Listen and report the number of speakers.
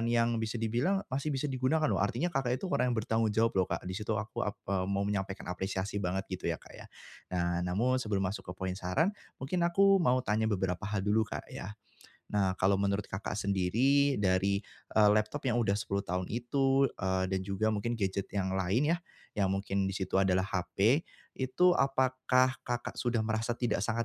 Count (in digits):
1